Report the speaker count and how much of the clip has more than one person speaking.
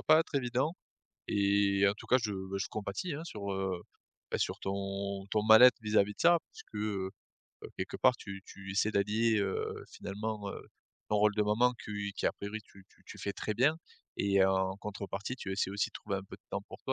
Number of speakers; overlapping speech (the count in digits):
1, no overlap